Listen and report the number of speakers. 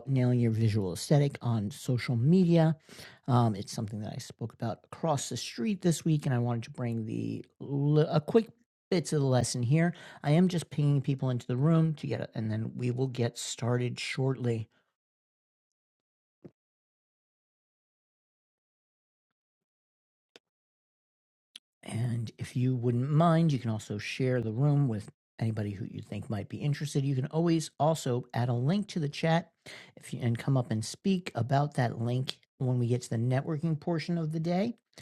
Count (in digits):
1